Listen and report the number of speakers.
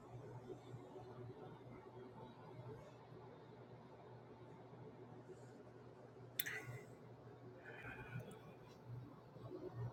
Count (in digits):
0